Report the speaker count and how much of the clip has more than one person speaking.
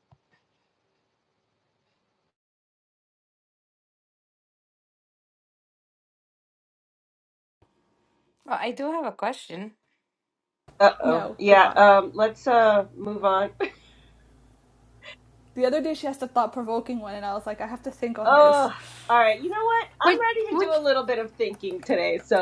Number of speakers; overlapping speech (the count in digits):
3, about 9%